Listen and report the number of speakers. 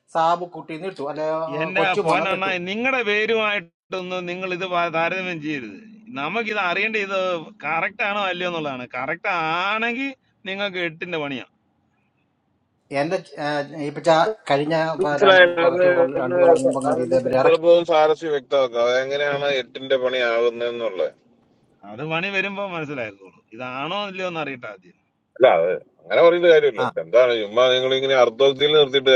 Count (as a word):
three